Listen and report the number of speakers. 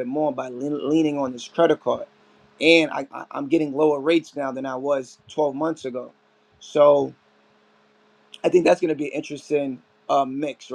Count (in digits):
1